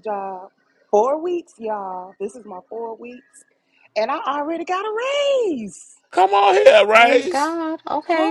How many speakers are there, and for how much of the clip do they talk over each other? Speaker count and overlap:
3, about 7%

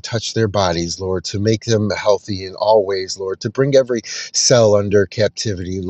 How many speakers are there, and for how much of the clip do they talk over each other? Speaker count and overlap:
1, no overlap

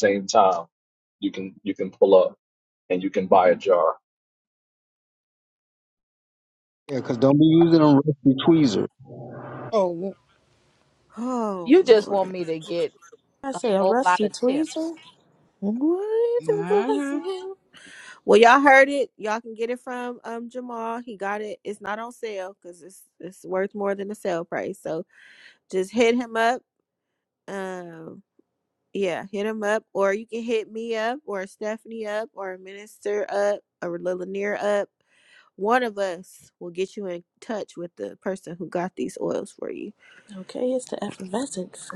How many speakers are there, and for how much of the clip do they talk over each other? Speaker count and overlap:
5, about 7%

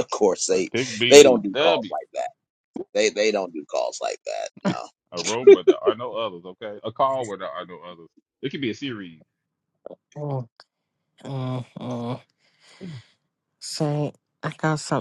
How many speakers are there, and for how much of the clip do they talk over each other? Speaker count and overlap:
3, about 6%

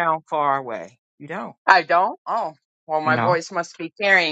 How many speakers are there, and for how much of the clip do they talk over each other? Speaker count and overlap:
2, about 7%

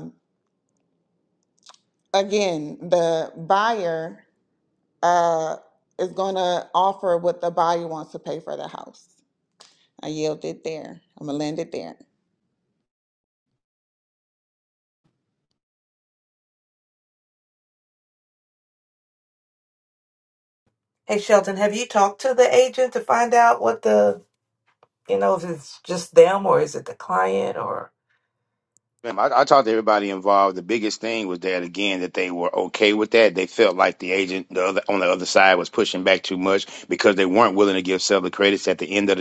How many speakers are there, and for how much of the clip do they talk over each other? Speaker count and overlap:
3, no overlap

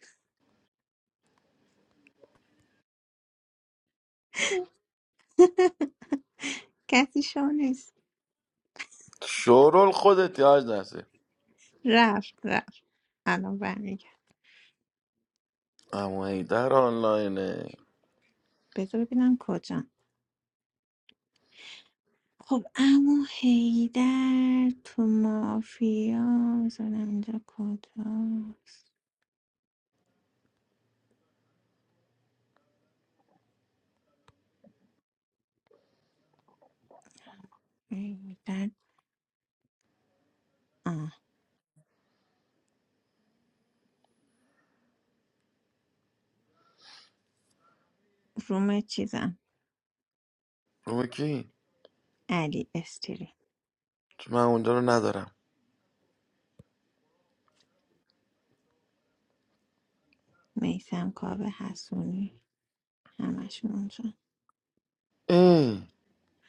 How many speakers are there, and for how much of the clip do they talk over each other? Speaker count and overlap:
2, no overlap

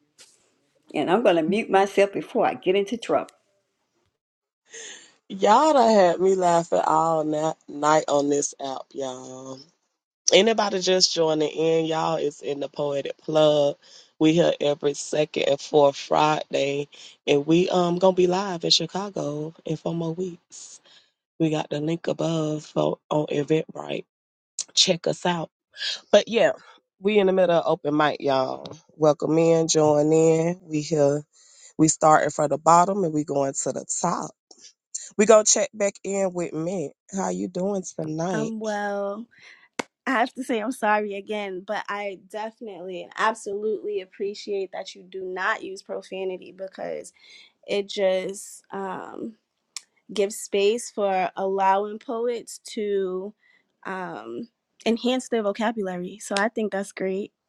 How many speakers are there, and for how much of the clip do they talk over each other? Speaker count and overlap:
3, under 1%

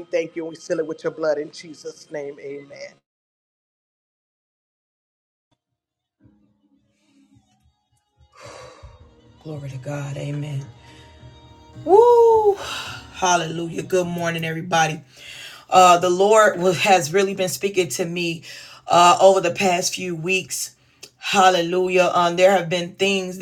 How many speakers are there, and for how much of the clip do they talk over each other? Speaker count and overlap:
2, no overlap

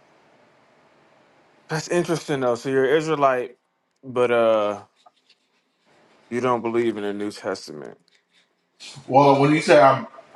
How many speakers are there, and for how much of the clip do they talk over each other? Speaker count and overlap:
2, no overlap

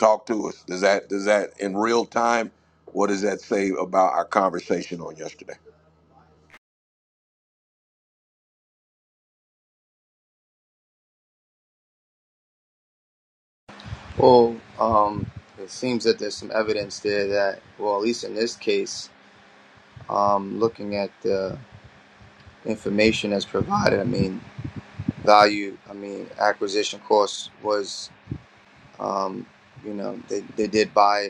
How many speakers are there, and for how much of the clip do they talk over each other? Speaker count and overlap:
2, no overlap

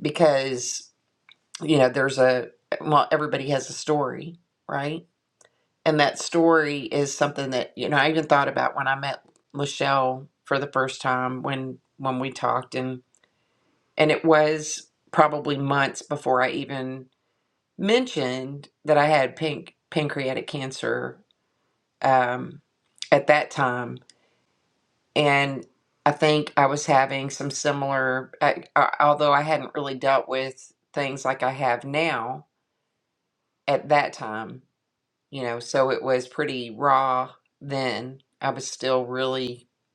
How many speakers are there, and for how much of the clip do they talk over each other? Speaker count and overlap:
1, no overlap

